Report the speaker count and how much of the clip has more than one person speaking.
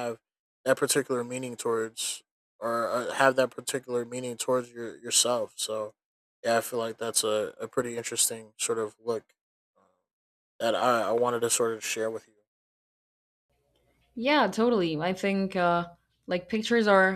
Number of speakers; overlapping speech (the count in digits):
2, no overlap